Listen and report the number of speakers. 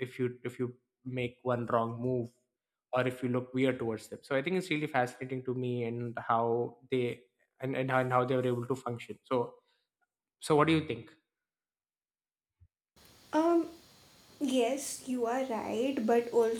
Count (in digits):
2